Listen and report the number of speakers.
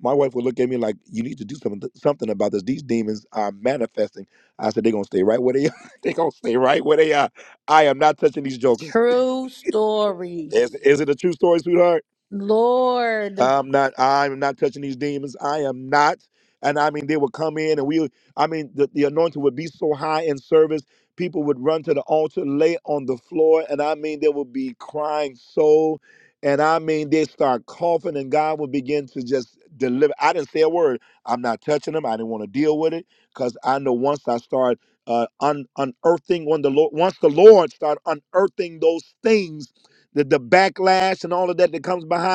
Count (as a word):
two